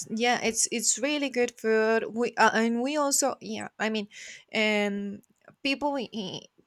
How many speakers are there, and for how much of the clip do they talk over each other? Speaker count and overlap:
1, no overlap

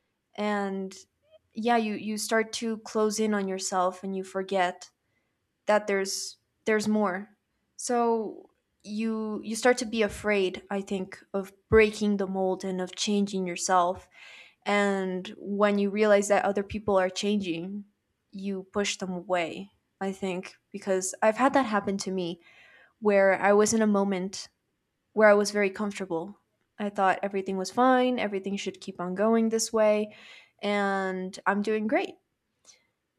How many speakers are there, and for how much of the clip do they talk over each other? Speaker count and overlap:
1, no overlap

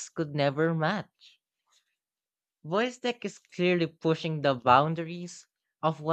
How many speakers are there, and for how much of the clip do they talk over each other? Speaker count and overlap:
1, no overlap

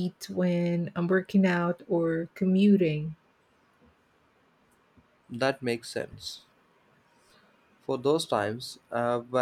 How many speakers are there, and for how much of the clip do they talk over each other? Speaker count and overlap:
2, no overlap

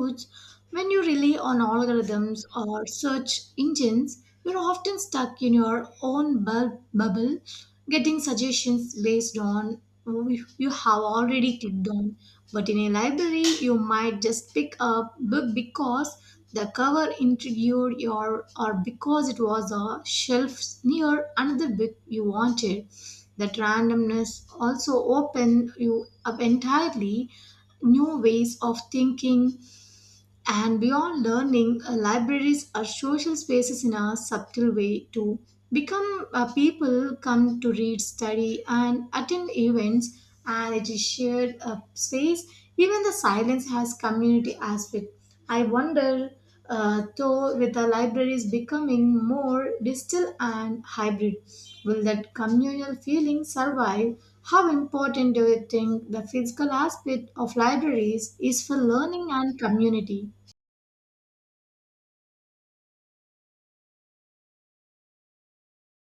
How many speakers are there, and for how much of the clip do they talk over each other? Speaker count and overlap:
1, no overlap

